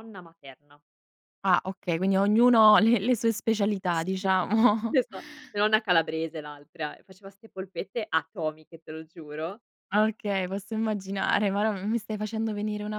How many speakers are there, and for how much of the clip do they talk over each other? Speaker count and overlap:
2, about 1%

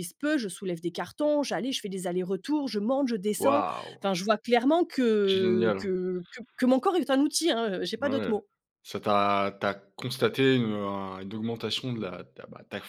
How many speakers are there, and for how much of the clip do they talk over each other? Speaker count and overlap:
2, about 11%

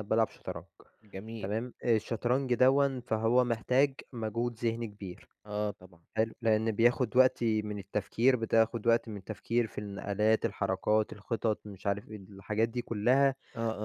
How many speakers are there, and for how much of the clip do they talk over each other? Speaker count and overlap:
2, under 1%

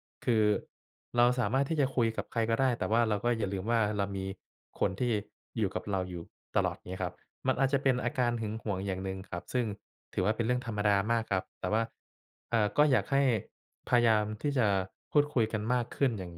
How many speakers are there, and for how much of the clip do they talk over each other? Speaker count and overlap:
1, no overlap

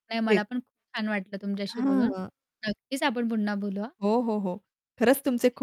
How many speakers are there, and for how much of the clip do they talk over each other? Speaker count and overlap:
2, about 10%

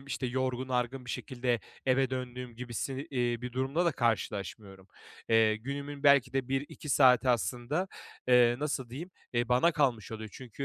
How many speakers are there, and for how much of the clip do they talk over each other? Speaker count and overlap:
1, no overlap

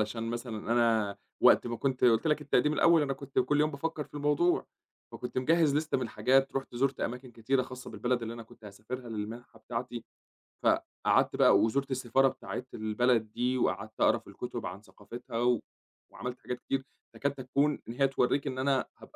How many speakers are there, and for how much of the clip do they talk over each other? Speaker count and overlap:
1, no overlap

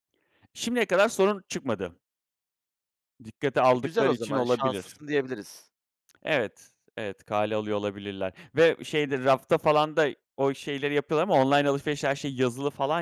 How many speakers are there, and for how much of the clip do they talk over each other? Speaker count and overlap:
2, about 9%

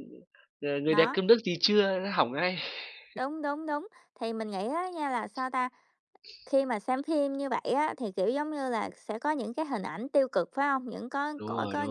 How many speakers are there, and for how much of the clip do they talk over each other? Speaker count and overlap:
2, about 7%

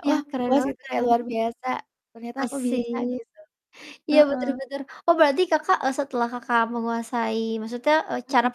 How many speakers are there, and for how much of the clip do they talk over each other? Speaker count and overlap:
2, about 31%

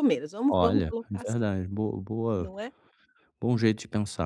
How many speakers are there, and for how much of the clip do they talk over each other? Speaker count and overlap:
2, about 24%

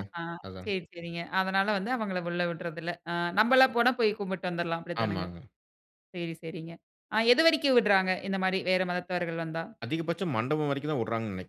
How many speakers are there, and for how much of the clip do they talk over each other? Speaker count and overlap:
2, about 3%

